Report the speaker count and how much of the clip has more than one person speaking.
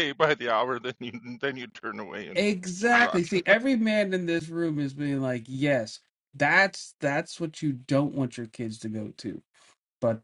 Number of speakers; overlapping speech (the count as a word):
two, about 3%